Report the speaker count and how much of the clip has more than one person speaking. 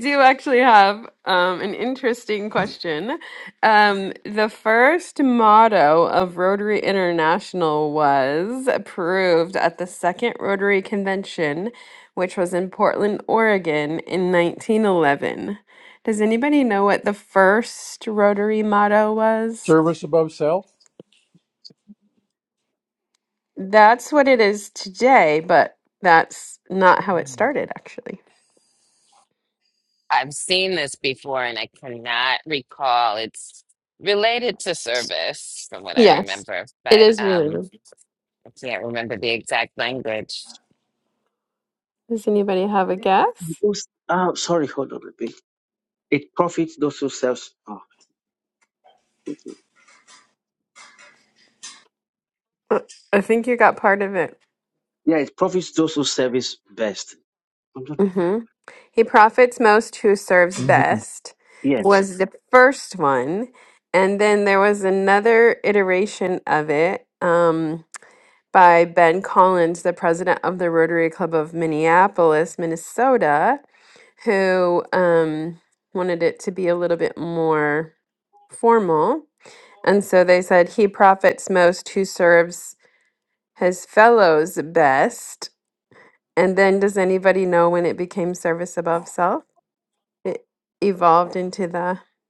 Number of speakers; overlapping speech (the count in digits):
4, about 2%